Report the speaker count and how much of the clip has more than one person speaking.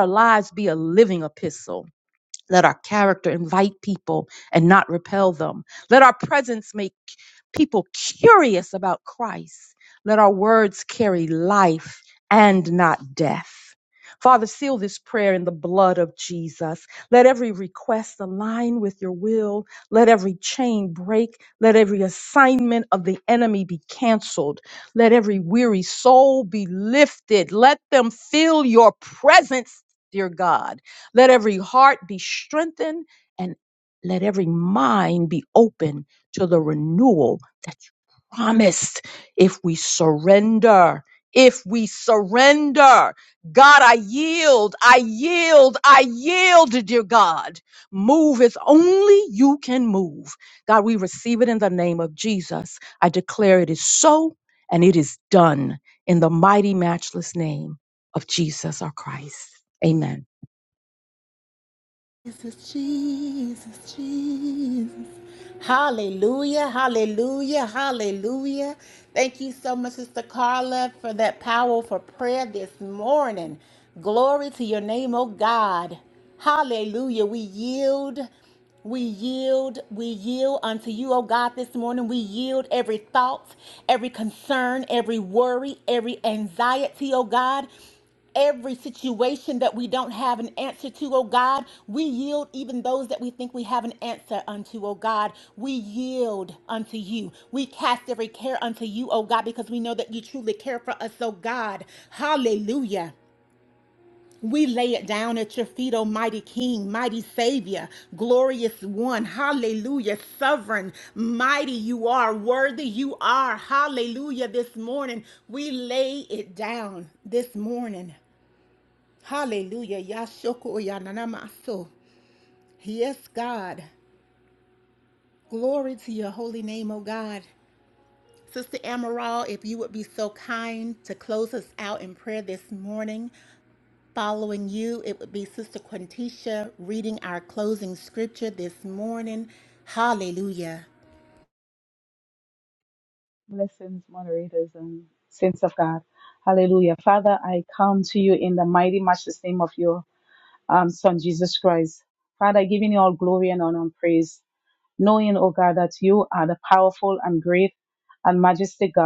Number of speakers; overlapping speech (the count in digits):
3, no overlap